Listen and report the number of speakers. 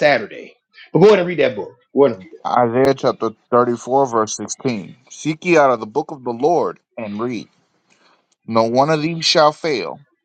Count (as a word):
two